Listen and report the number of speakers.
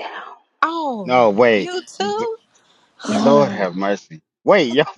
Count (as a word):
three